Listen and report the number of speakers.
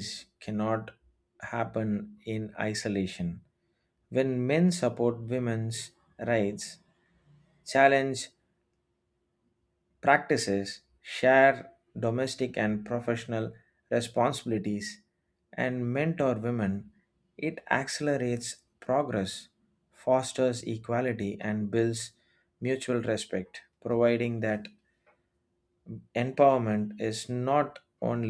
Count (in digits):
1